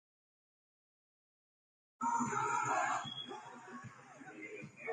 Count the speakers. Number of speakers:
zero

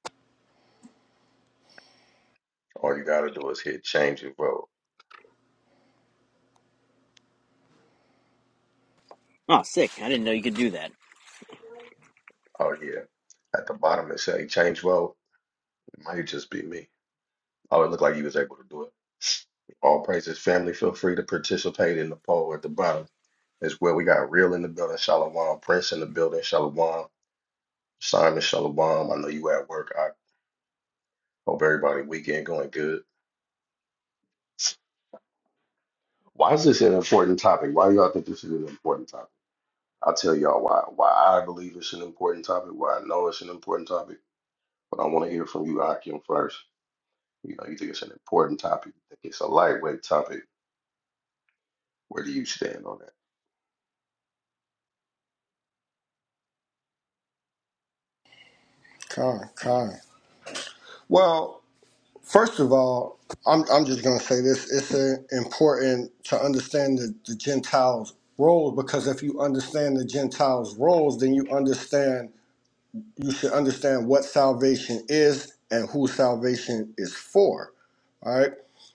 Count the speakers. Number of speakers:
three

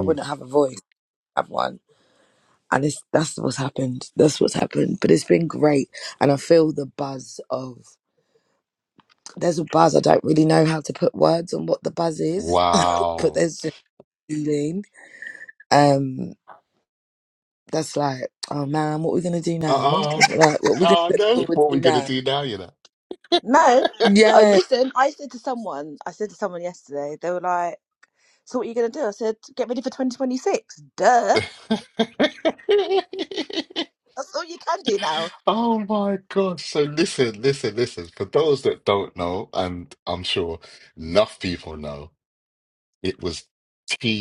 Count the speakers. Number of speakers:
three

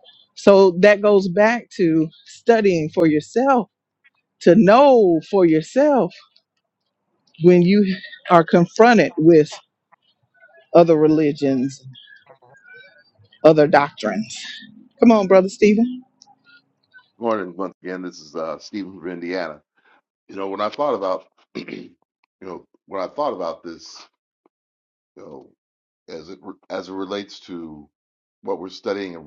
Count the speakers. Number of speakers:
two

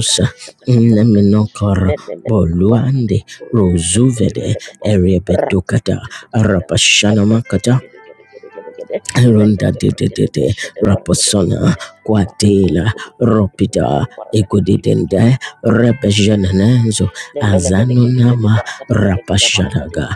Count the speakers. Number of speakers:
two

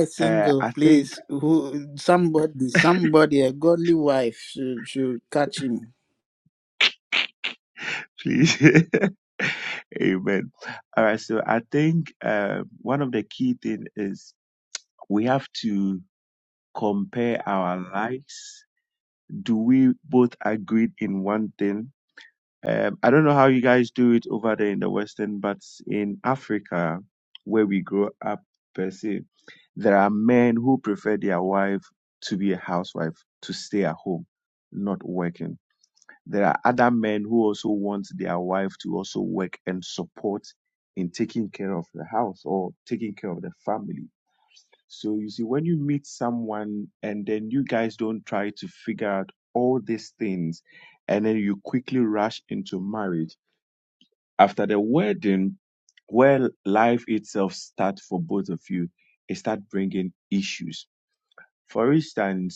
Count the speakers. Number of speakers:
two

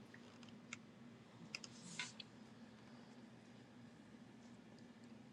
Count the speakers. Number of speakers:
zero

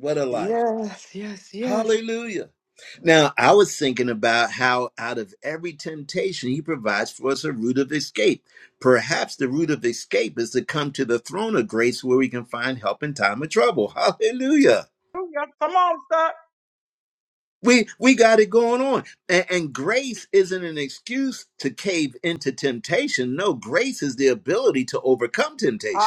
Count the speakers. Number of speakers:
three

